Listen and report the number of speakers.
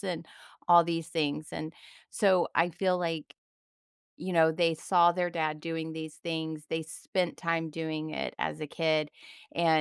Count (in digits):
1